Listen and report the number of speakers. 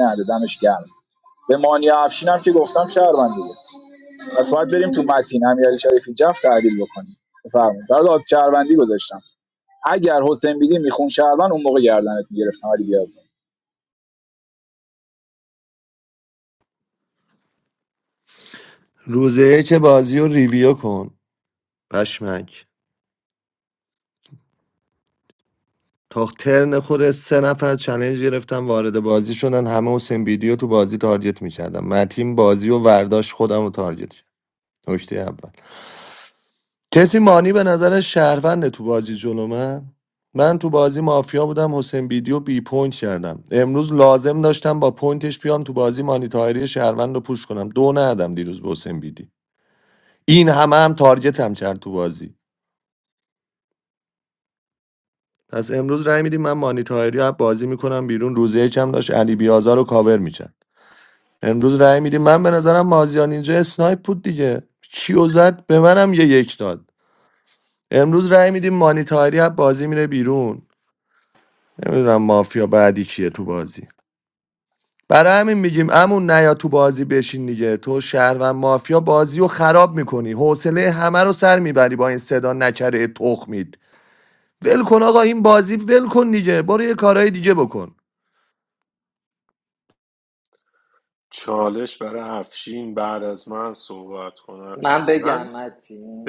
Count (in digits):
4